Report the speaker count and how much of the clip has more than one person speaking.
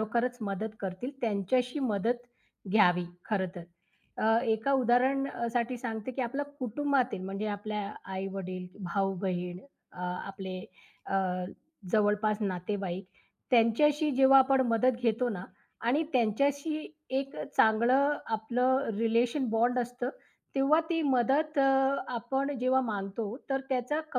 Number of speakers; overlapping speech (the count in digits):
1, no overlap